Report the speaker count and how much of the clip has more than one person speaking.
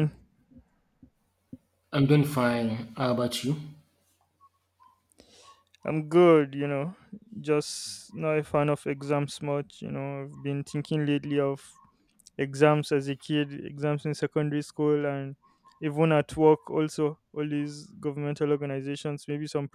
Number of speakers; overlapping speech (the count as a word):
two, no overlap